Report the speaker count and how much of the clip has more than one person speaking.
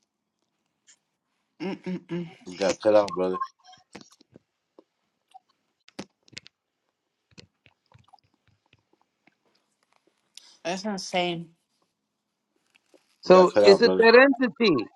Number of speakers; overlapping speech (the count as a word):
three, about 5%